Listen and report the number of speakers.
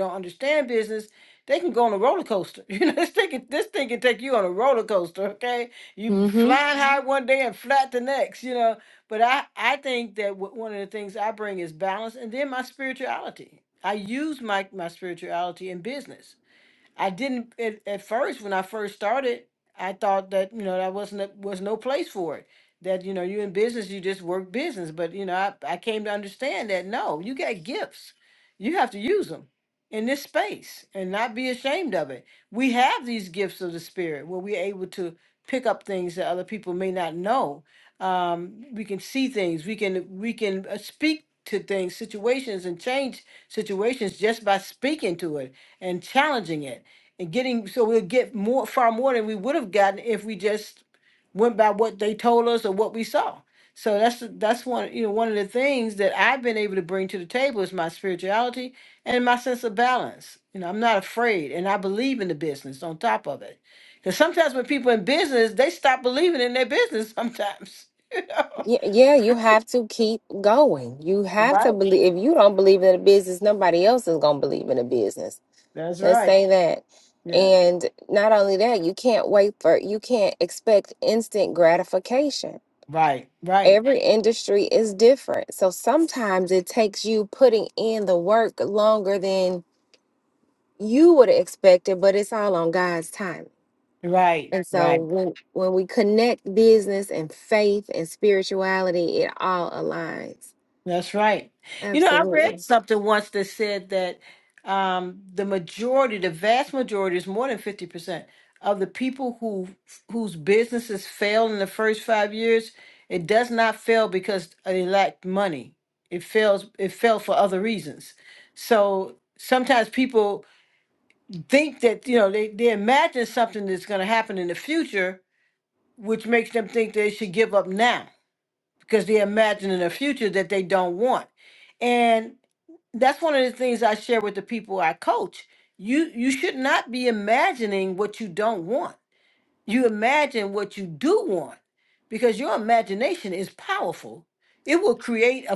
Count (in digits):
2